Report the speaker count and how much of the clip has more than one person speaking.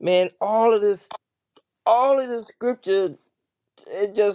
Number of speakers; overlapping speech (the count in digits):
1, no overlap